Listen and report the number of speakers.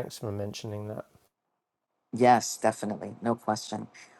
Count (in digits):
2